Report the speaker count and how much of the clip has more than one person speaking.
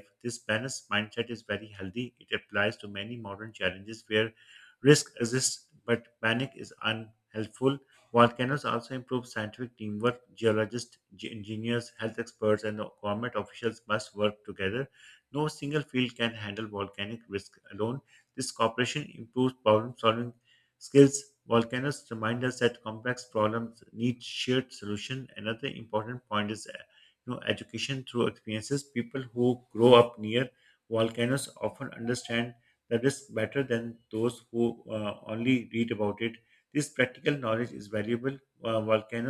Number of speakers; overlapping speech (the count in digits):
1, no overlap